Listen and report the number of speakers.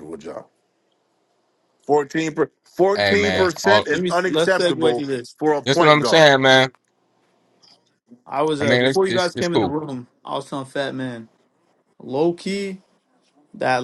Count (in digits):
3